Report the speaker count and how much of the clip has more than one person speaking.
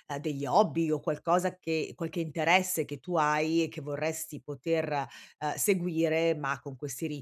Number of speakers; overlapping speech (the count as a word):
one, no overlap